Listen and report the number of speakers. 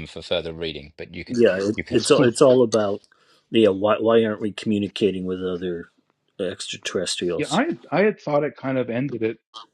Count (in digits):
3